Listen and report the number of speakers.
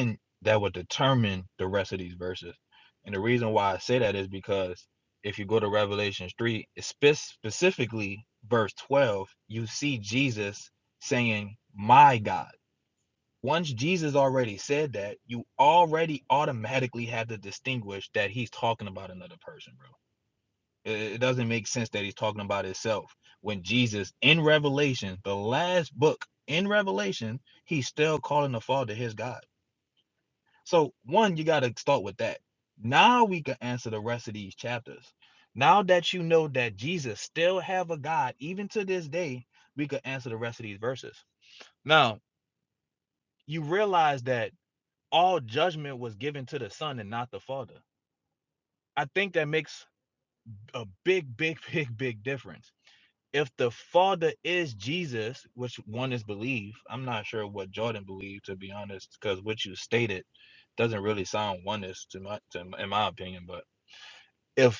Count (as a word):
one